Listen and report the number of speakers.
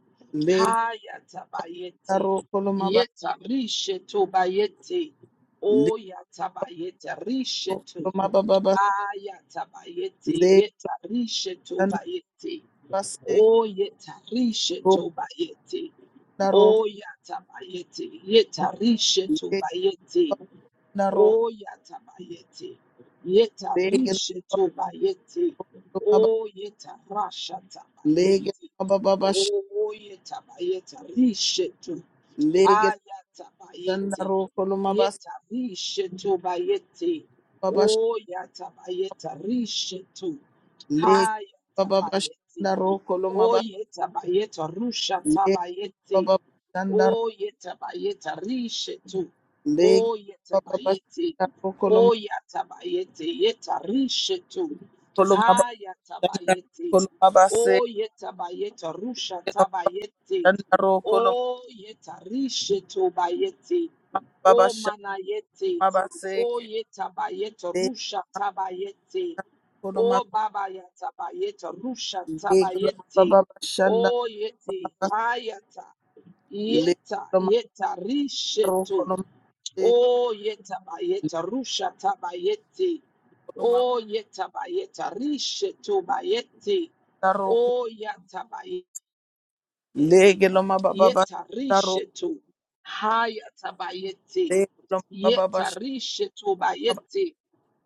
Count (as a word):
two